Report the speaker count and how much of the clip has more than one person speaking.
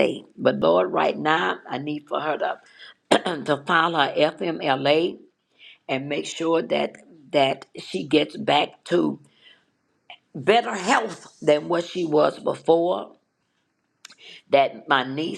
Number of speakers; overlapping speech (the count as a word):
one, no overlap